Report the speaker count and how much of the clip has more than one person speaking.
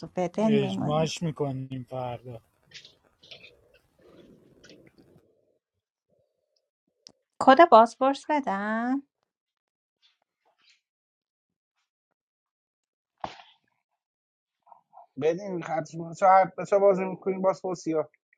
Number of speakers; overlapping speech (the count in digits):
3, about 3%